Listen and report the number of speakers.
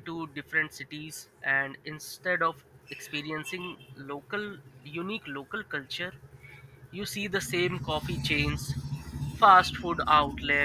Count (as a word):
one